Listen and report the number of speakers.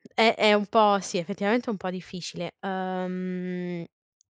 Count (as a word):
one